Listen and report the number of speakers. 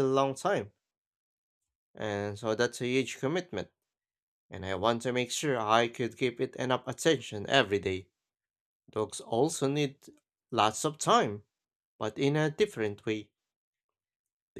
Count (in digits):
1